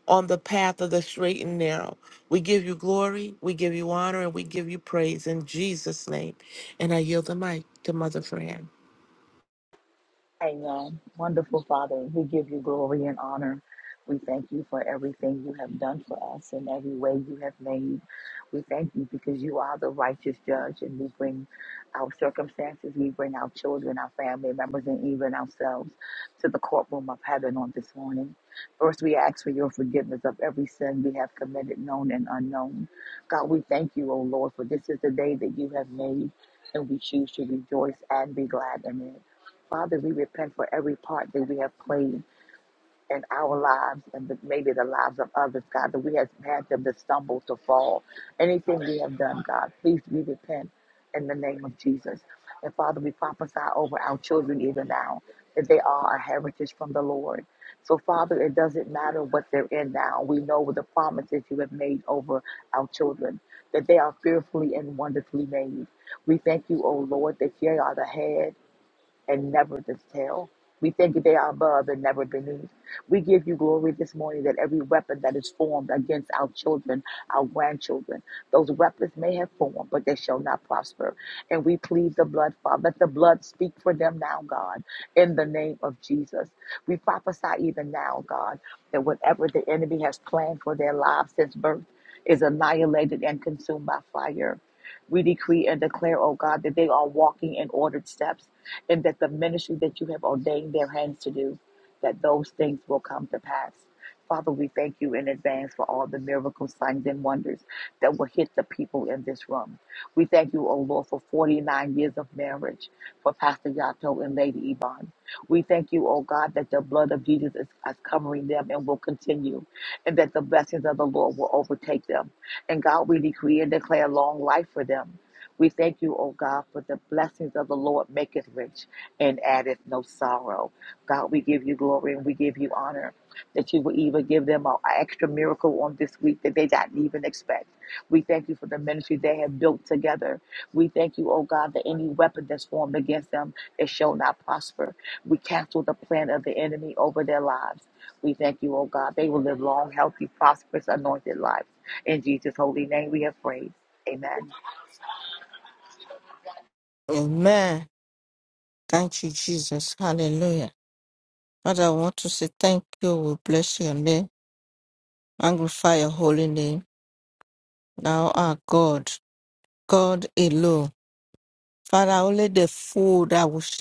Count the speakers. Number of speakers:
3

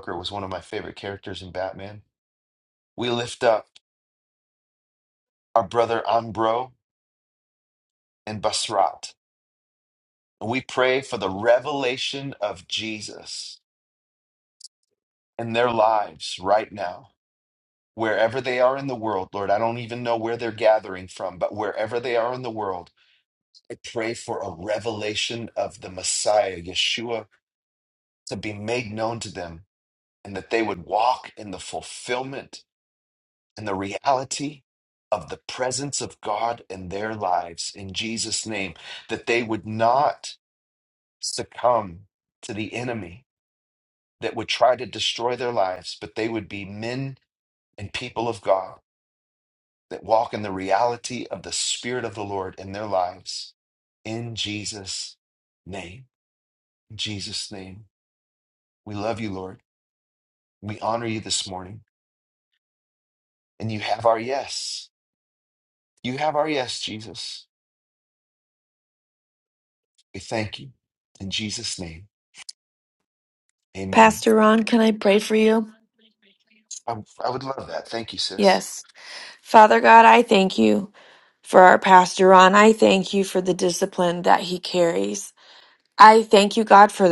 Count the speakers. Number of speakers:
2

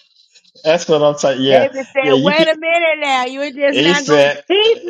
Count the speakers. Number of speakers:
2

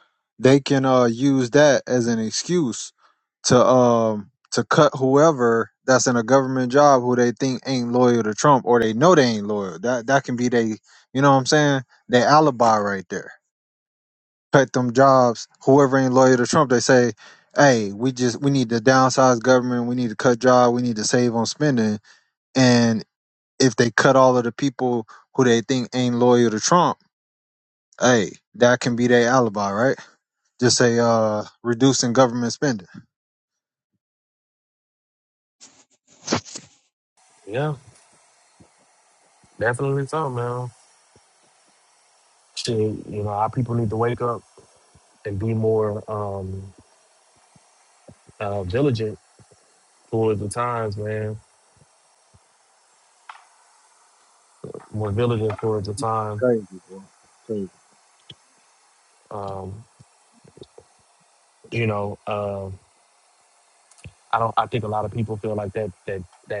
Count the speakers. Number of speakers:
2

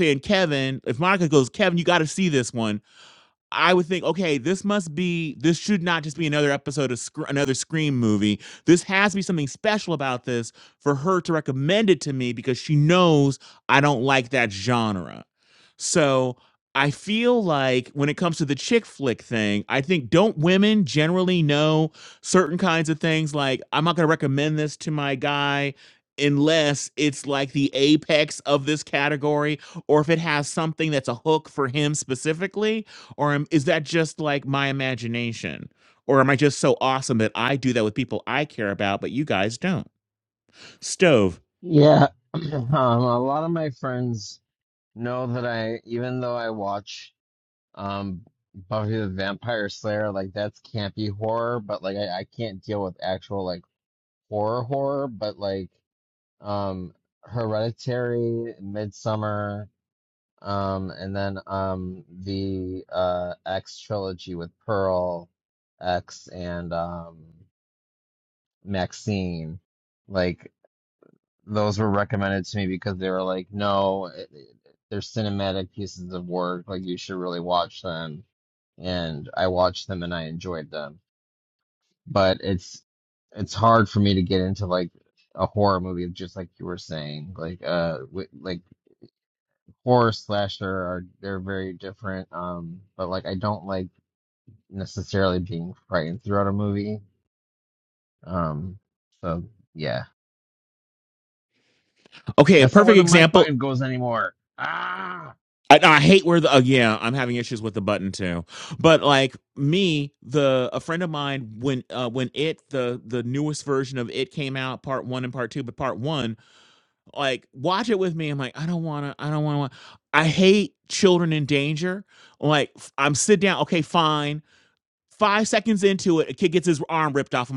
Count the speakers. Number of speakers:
2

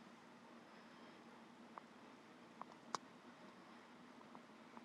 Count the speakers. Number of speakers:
0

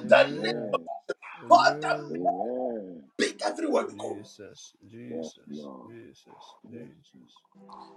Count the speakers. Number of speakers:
3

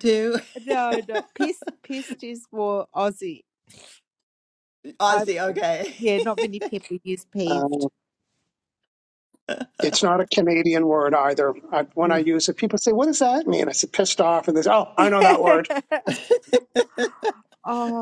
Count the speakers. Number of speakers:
3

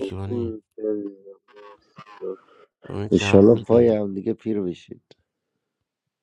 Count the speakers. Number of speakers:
3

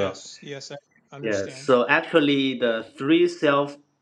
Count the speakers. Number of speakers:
2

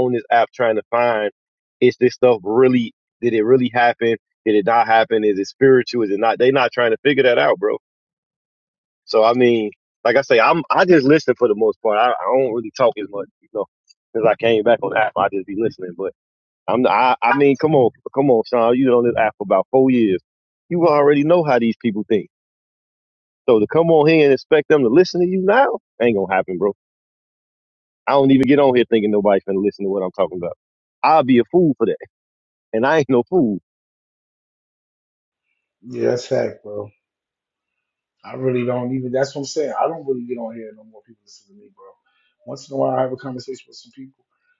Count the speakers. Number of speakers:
2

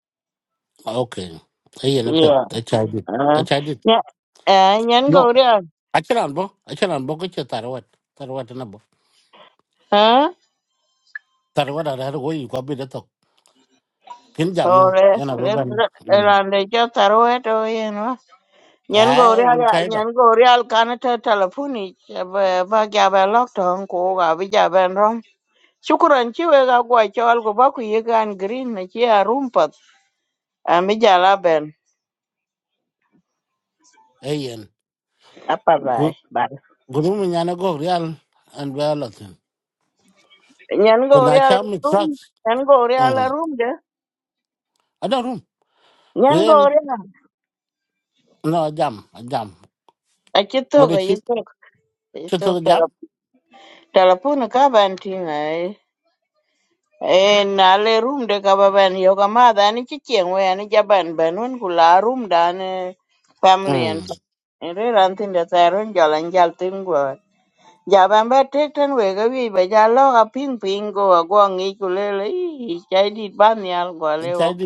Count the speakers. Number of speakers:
2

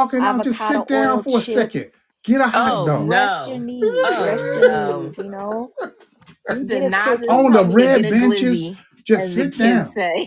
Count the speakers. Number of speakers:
3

